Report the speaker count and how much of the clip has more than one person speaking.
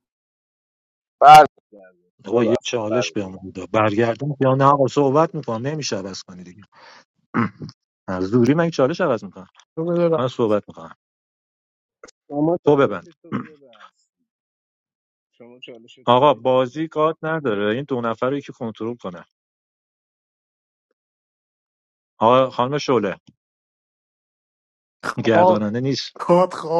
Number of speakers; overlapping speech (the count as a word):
three, about 6%